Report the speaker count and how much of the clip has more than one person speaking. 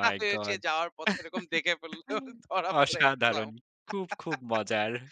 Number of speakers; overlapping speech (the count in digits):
2, about 25%